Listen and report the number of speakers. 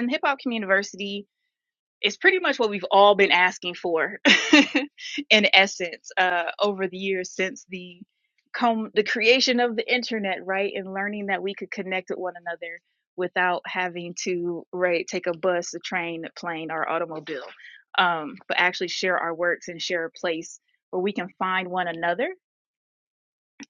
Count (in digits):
1